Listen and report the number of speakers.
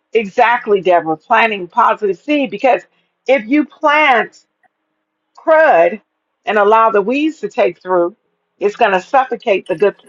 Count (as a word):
one